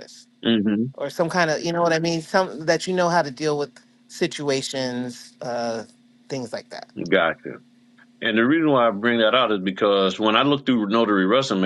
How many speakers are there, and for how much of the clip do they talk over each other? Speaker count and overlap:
2, no overlap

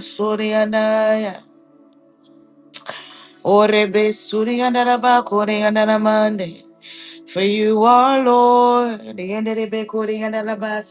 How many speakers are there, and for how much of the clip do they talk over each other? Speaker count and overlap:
1, no overlap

